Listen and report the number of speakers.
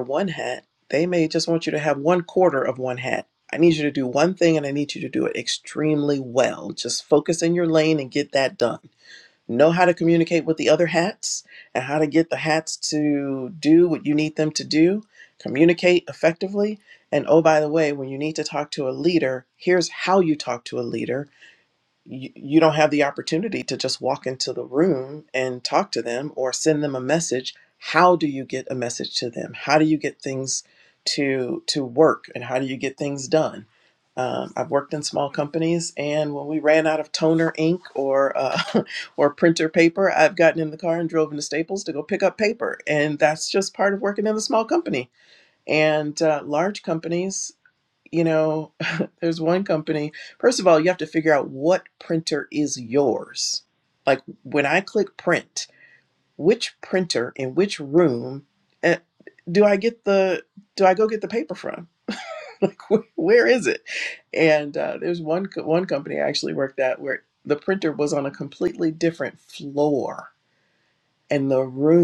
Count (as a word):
one